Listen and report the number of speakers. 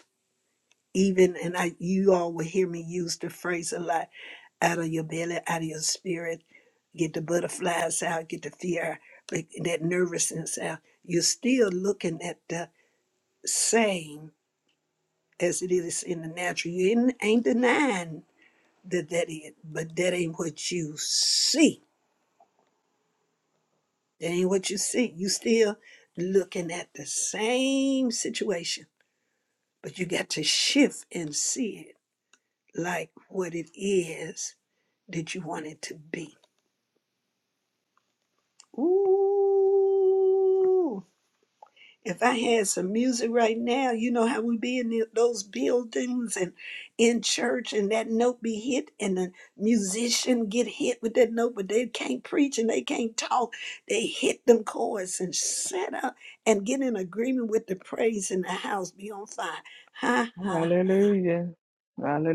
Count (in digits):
2